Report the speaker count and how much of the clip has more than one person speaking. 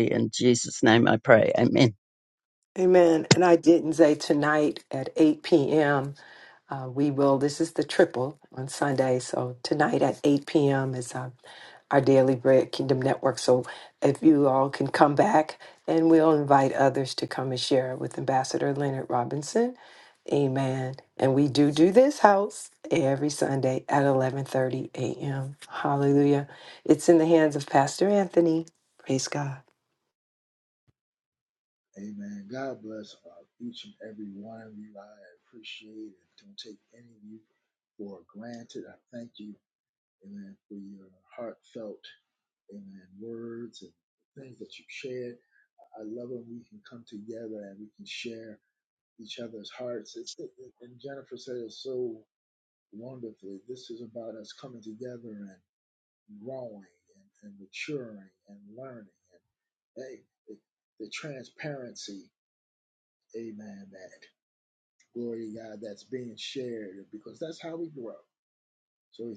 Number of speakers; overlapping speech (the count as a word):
three, no overlap